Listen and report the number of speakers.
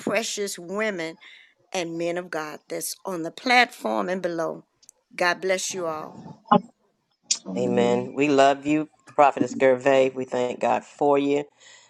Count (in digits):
2